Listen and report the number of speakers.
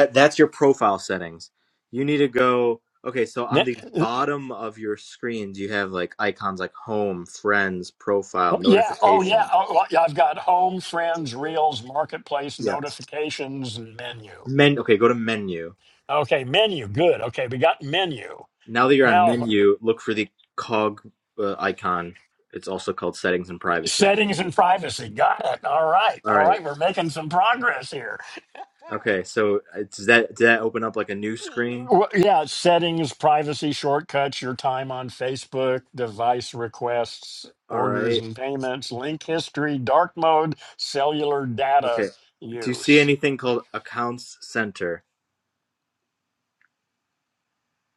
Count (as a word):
two